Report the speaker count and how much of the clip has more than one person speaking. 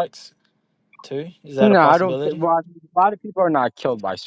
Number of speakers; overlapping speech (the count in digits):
2, about 18%